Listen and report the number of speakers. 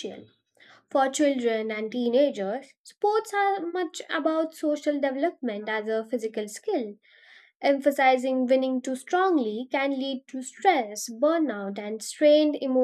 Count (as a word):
one